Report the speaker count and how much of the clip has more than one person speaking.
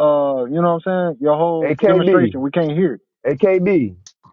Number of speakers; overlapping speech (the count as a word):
two, about 17%